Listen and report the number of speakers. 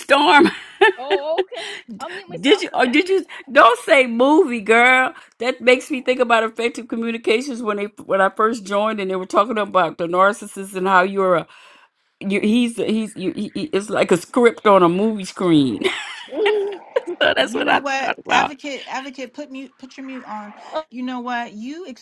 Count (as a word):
three